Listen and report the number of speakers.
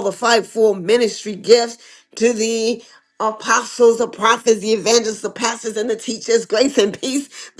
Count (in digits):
1